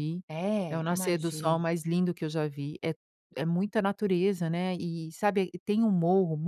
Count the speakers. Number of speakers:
2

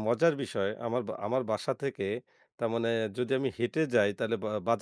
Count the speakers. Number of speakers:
1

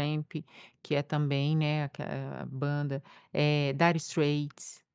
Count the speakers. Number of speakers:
1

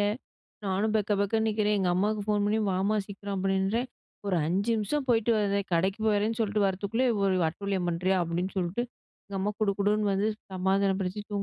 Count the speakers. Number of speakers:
1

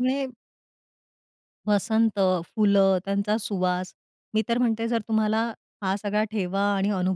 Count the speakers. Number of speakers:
1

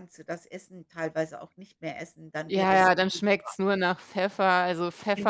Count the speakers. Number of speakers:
2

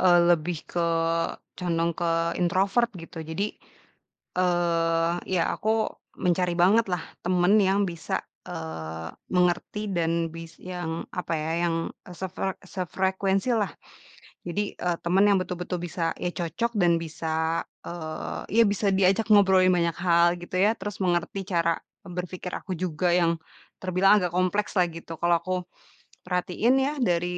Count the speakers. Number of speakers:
1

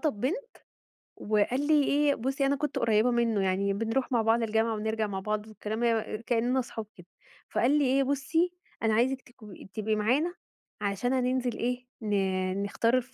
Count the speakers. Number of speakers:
1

